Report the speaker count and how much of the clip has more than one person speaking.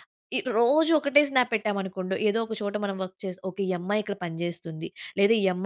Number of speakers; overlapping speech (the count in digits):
1, no overlap